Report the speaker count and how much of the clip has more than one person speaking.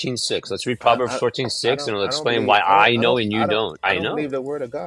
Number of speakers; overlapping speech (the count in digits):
2, about 63%